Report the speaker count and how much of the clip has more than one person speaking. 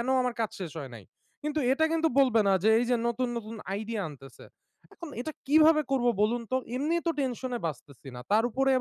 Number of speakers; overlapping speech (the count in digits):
1, no overlap